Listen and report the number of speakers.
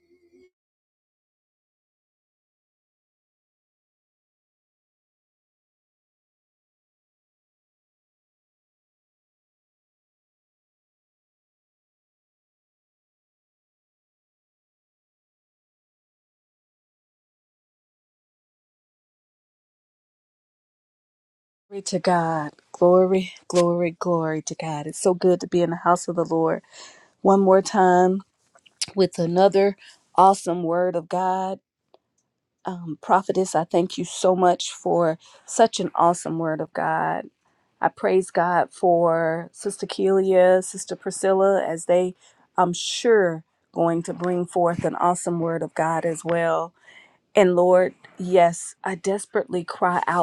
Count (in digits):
1